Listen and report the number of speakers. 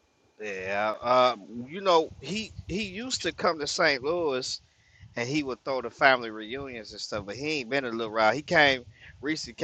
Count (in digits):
1